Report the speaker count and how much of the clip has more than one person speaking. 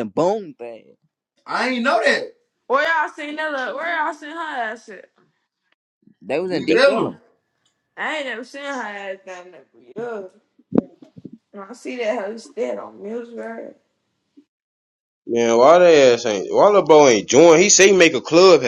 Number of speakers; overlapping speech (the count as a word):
four, about 3%